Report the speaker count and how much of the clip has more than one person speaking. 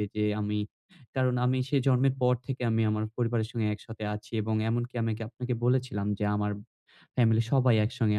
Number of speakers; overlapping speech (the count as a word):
one, no overlap